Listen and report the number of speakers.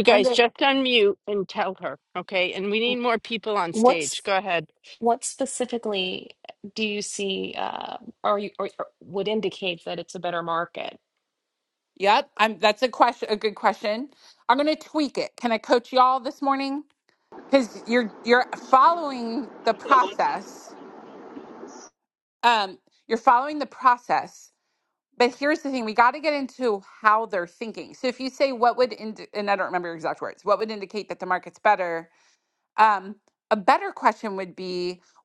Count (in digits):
3